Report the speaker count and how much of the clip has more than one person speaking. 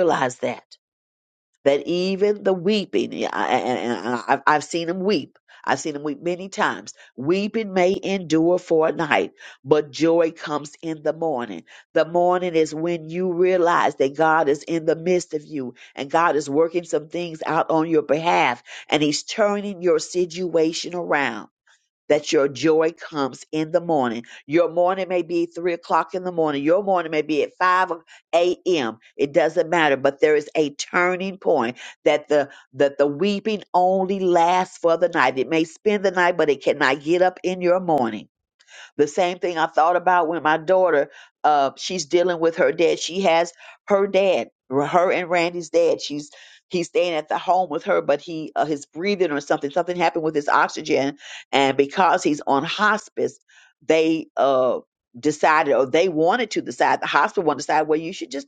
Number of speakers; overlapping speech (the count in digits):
1, no overlap